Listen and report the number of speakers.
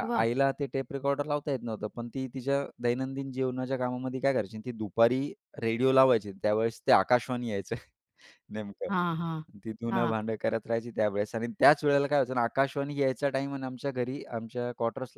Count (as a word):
two